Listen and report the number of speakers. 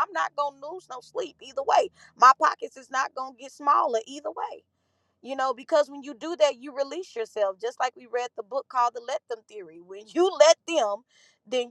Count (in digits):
1